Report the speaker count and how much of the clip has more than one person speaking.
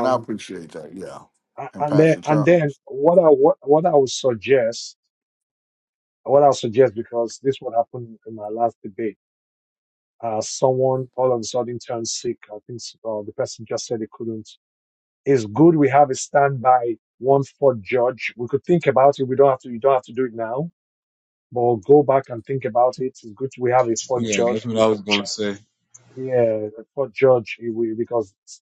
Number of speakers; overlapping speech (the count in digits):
3, about 5%